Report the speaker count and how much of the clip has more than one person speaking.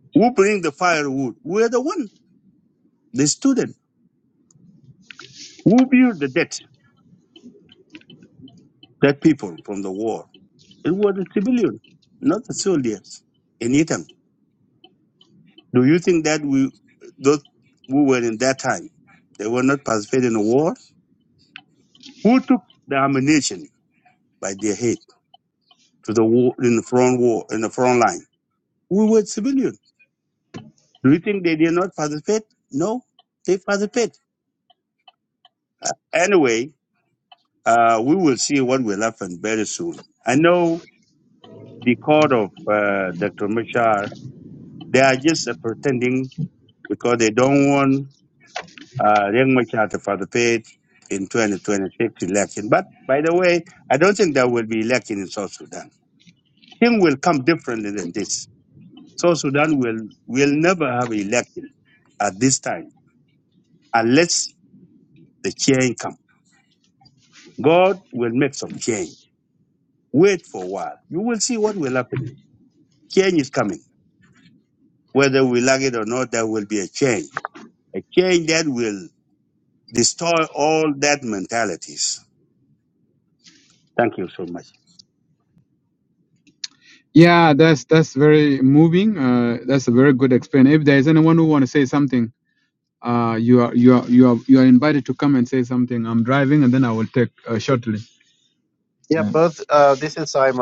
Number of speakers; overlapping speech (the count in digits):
3, under 1%